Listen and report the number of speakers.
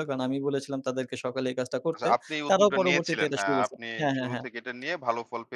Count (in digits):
2